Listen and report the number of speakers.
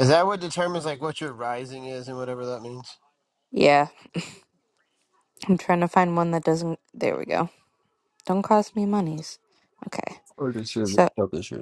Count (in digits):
3